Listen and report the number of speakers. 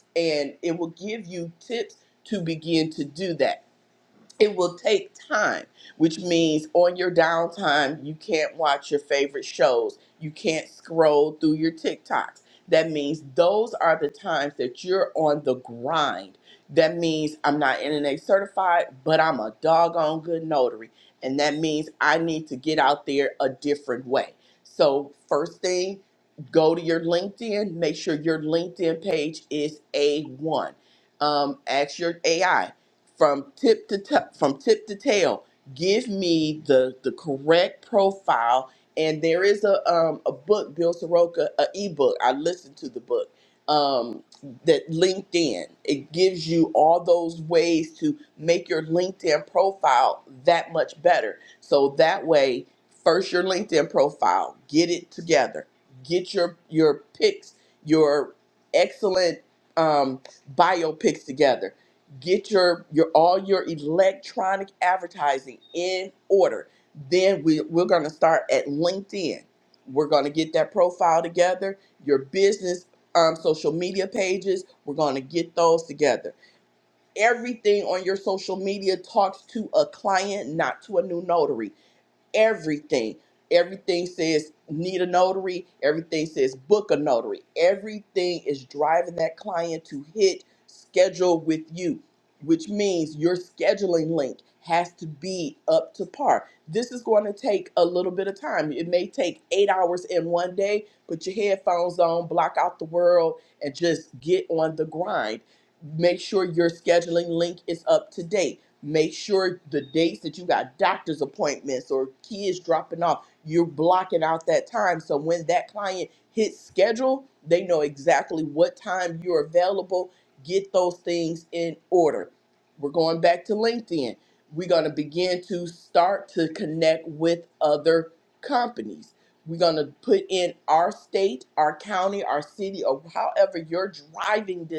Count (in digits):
1